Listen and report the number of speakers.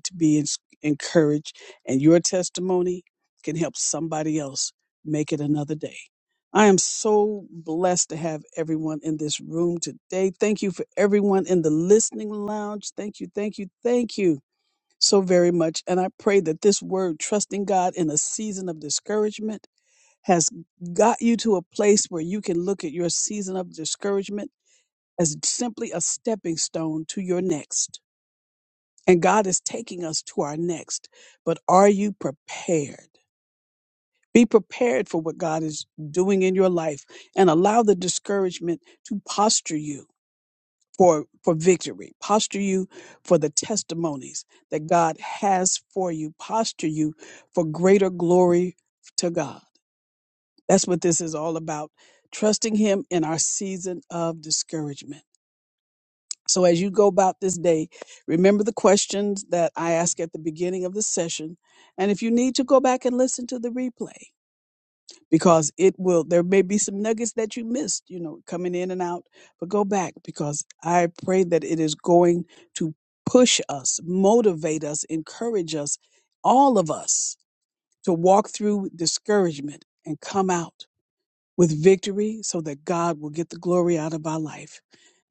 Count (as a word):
one